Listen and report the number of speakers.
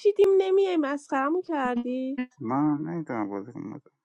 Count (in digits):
2